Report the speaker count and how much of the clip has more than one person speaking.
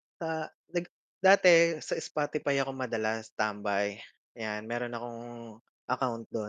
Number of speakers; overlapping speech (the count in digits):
1, no overlap